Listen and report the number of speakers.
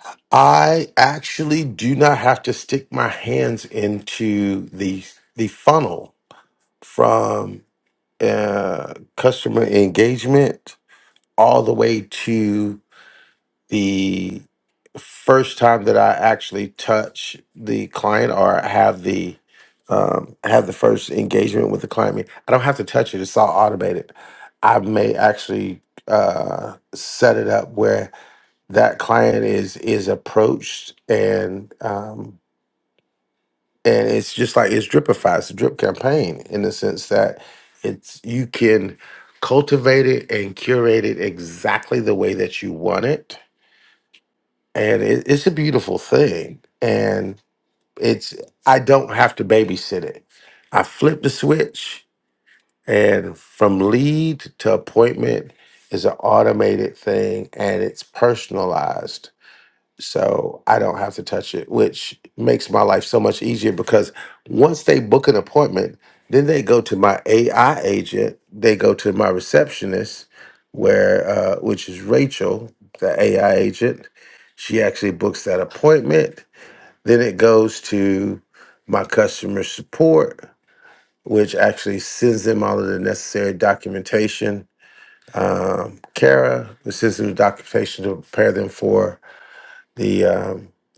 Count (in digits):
1